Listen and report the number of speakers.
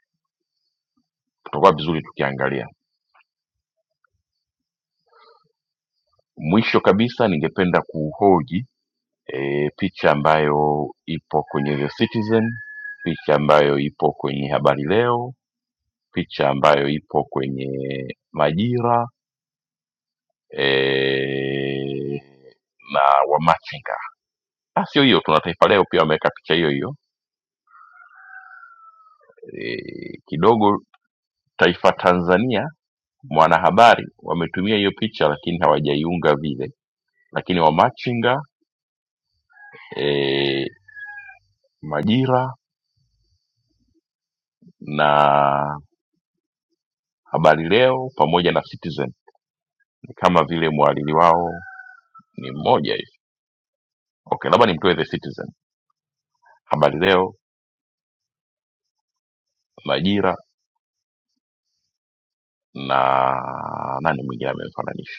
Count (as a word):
one